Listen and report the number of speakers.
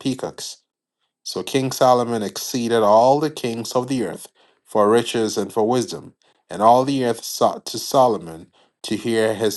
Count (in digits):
1